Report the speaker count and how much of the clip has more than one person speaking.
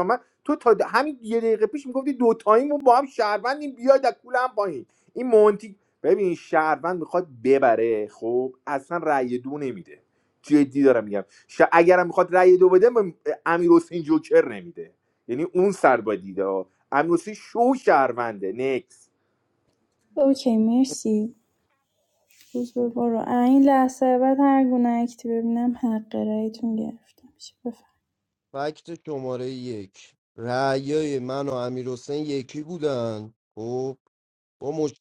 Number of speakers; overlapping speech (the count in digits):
3, no overlap